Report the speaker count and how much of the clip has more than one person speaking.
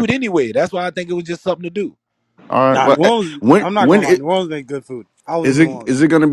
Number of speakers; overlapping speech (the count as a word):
three, about 32%